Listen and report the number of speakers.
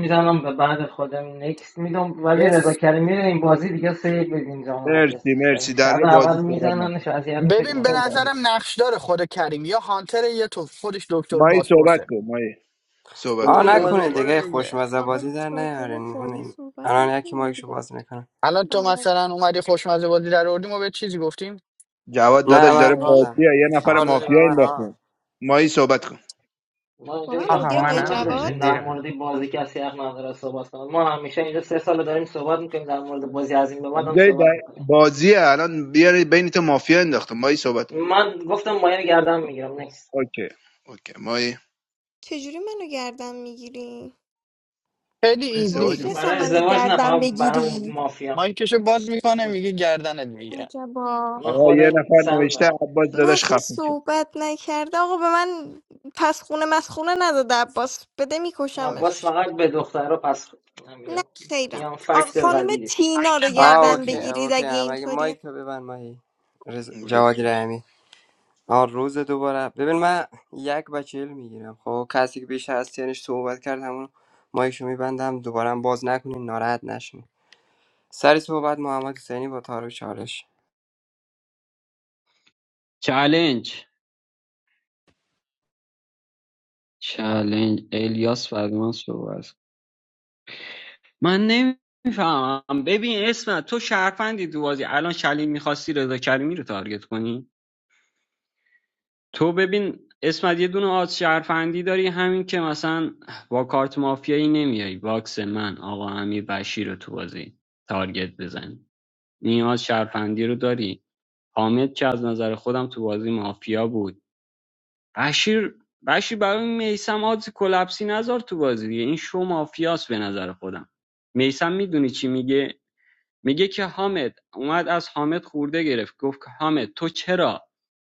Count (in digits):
6